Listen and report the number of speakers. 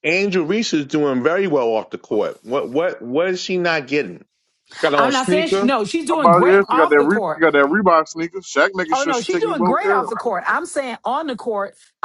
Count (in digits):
3